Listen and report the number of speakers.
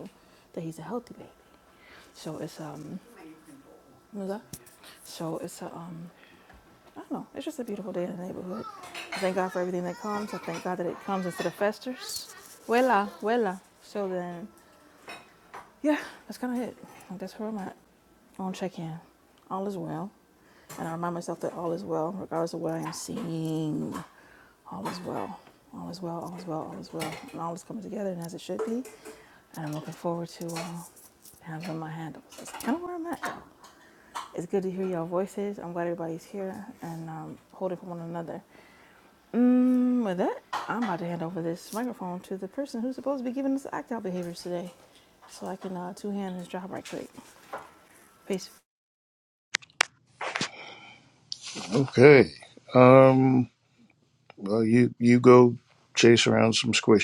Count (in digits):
2